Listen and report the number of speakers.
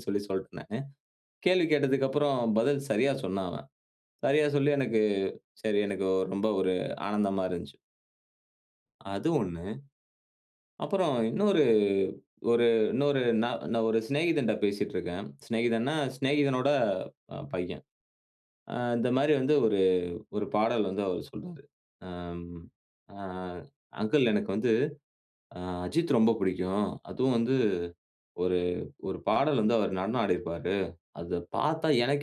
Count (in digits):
1